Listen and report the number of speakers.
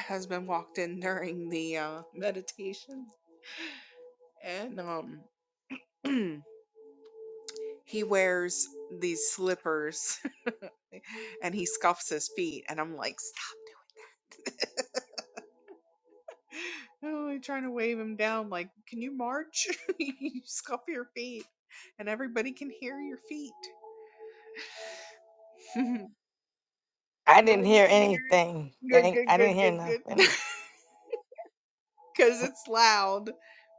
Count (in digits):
2